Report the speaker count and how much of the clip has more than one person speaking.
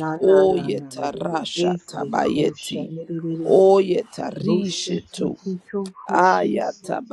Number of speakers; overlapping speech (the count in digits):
2, about 59%